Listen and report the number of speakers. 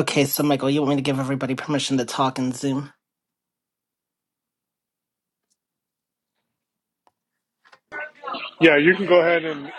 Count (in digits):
2